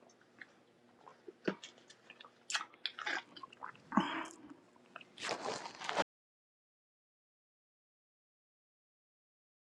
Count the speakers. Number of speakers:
0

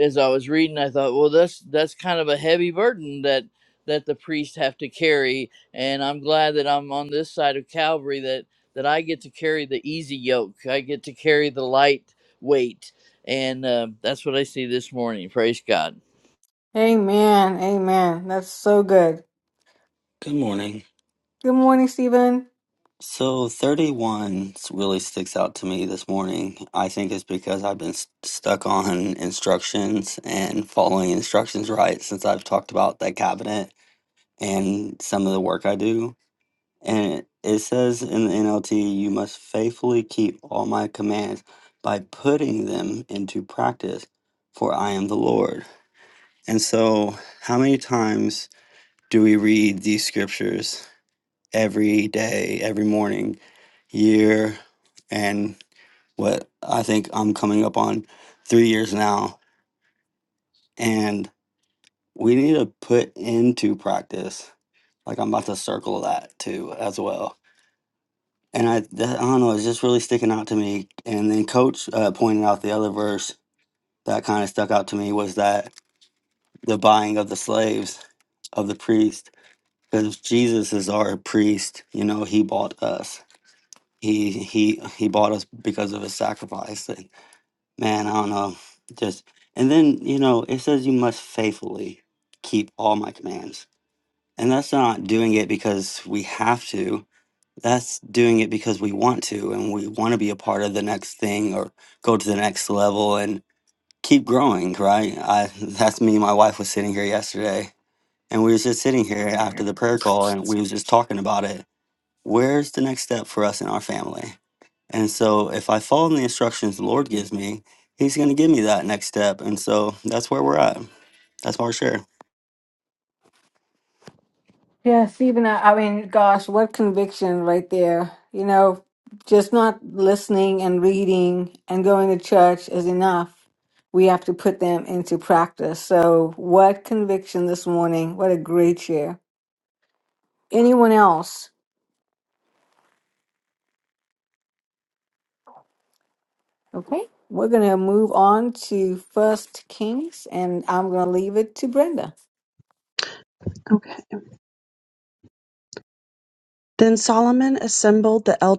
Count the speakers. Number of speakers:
4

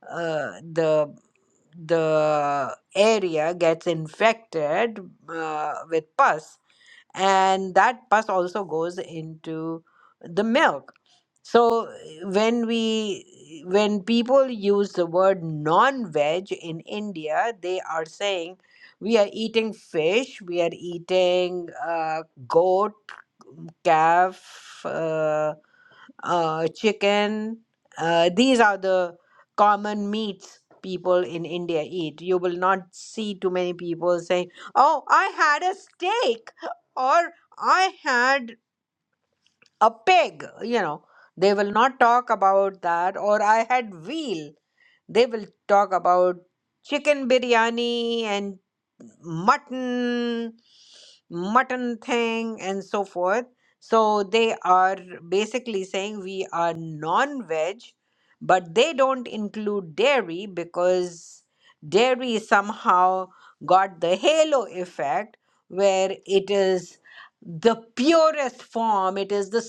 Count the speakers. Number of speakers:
1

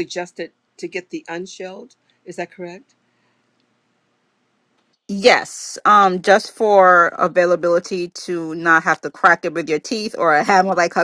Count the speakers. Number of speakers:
2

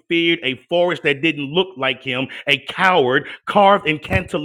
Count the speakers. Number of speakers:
1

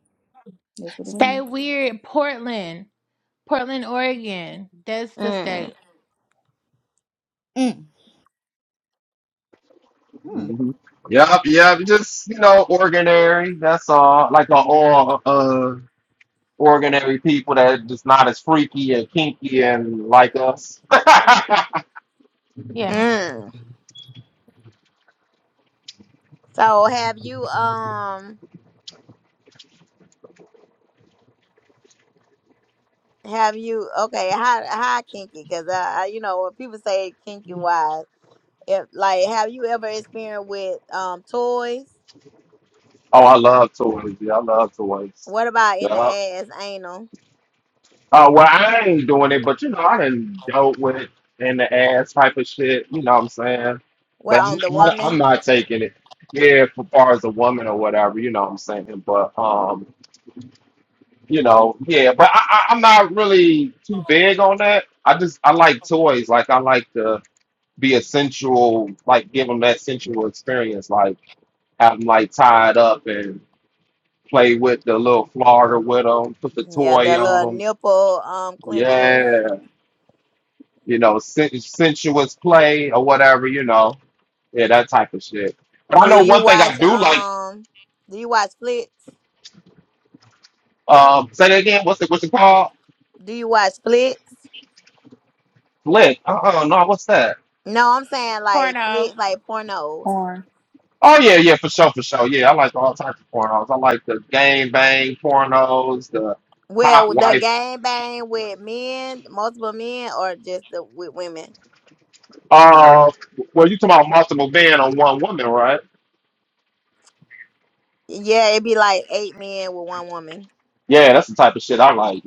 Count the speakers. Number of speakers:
4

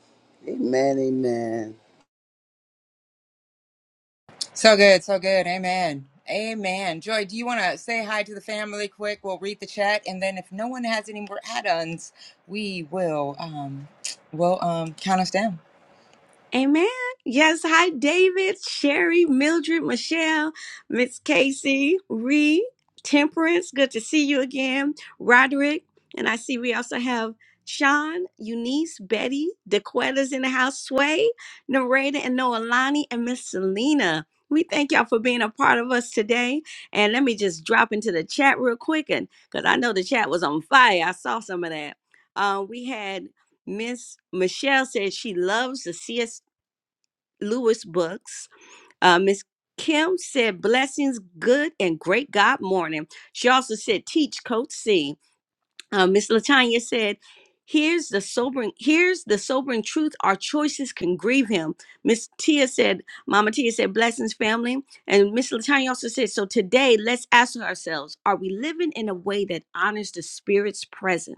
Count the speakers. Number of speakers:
3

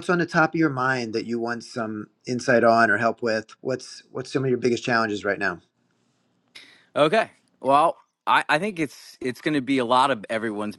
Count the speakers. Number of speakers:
2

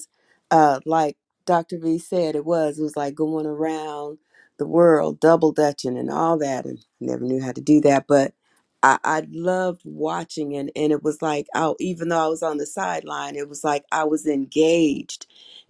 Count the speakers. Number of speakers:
1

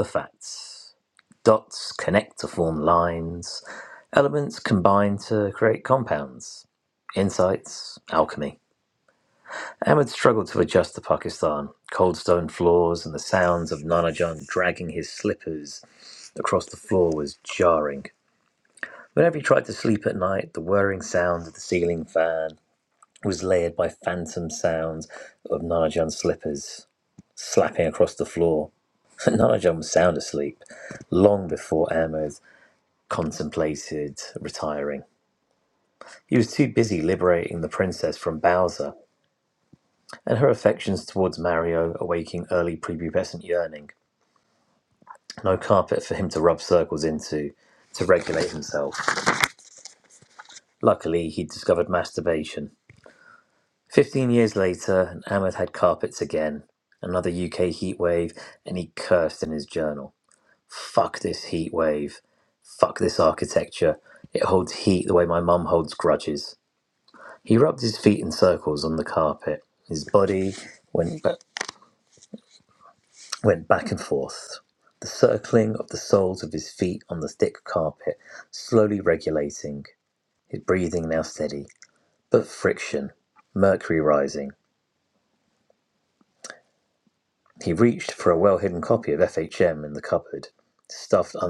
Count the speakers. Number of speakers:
1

